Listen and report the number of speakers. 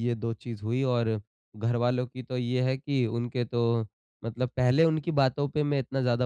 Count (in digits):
1